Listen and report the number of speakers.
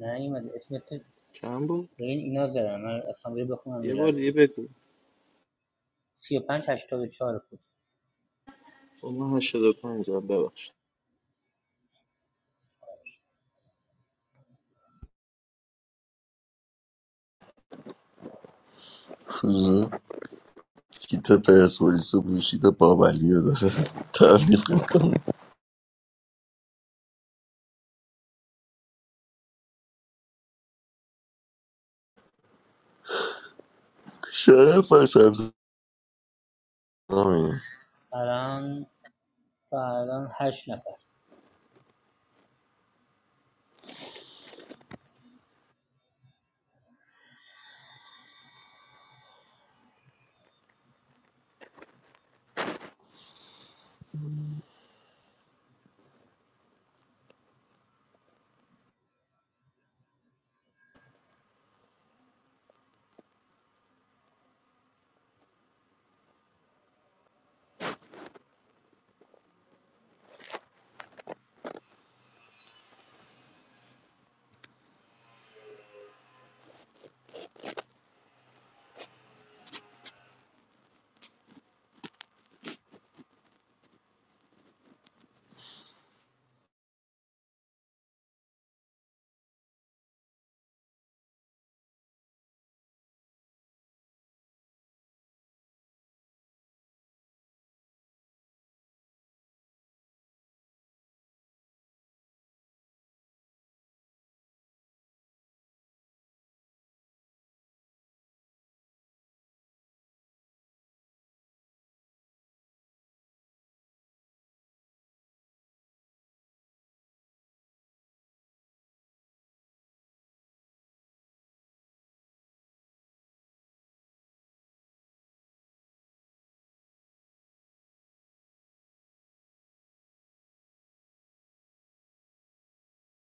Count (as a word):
three